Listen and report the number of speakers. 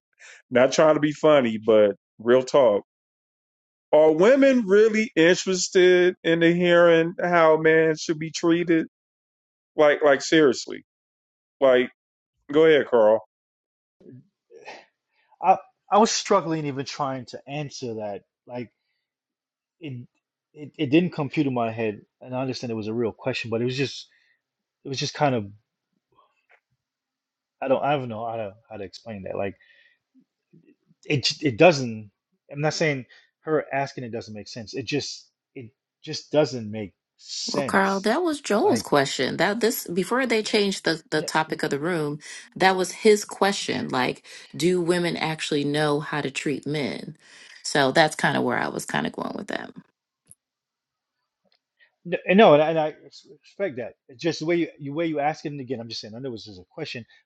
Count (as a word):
three